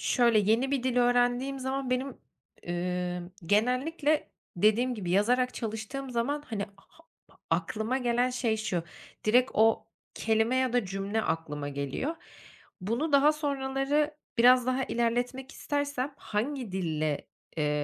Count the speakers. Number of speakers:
one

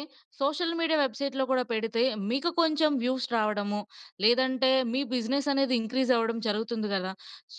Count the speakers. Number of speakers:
one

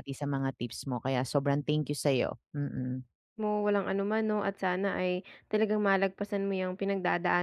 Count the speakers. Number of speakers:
two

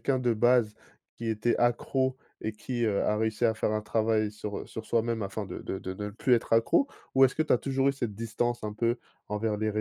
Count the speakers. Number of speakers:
one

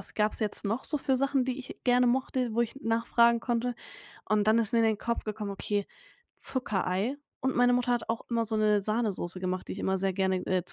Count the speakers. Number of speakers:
one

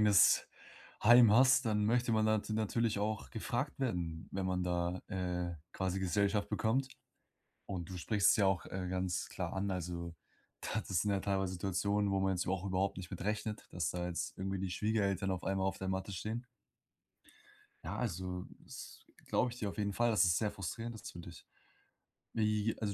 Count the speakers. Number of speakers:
one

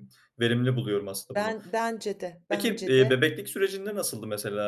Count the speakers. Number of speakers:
two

